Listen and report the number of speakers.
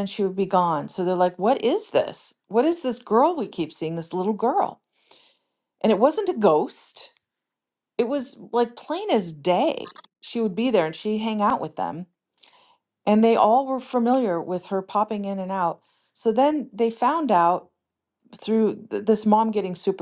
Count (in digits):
1